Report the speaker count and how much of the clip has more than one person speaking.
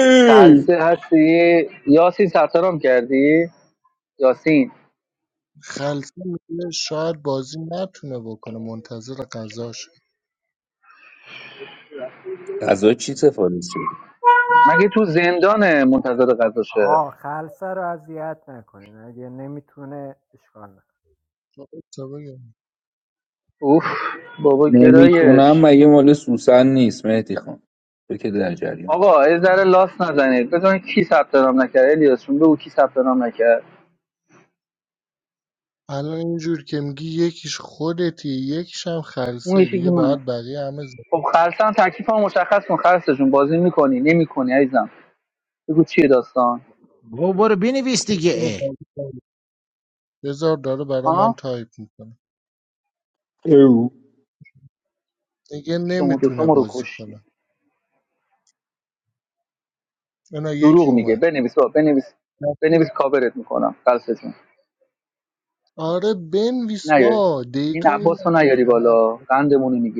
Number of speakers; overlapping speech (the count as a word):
five, about 9%